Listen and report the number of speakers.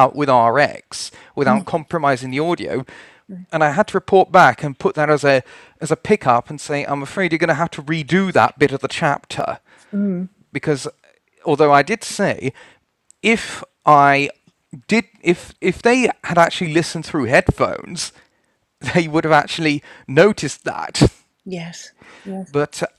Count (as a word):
two